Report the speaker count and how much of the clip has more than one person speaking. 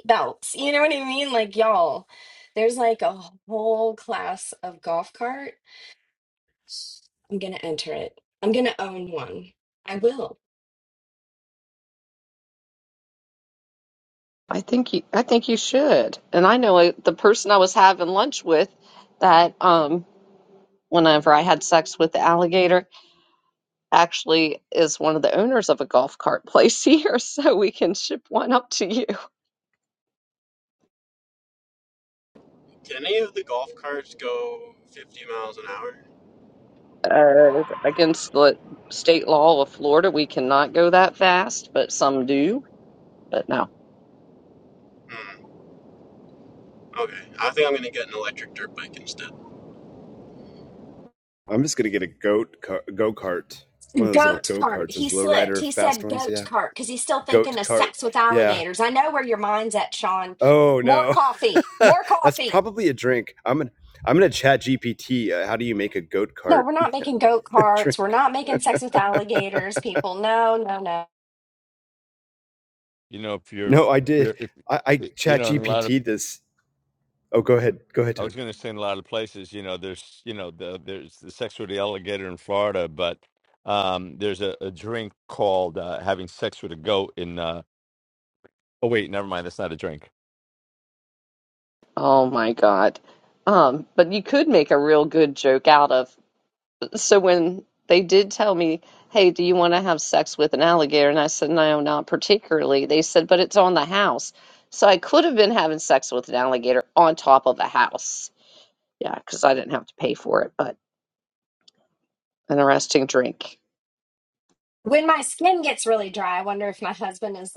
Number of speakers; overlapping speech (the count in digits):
5, about 5%